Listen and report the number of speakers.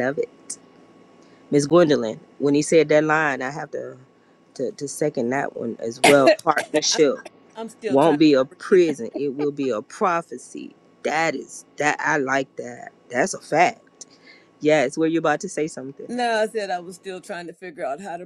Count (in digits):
2